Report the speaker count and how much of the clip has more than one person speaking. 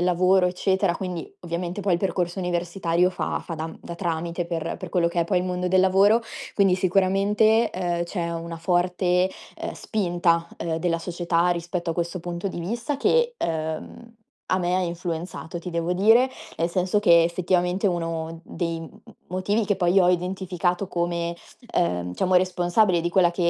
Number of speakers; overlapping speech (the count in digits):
1, no overlap